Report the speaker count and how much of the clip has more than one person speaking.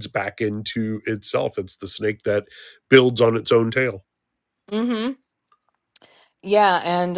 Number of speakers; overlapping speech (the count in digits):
2, no overlap